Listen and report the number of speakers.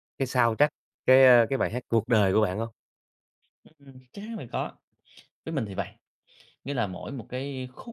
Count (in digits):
2